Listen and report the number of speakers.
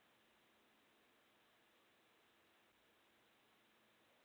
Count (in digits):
0